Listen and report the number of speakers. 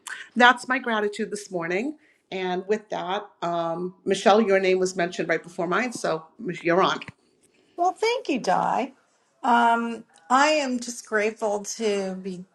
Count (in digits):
2